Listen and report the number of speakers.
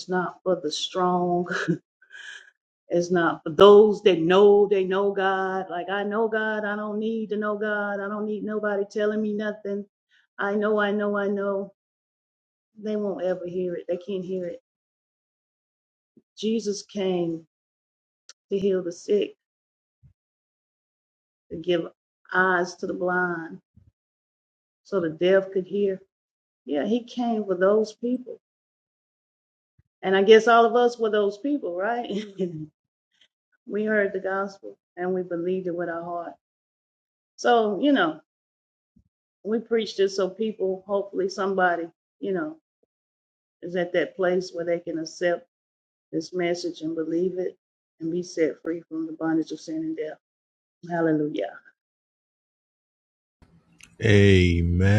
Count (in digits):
2